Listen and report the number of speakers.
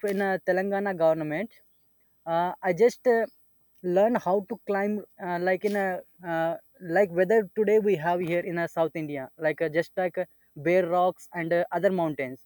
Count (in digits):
1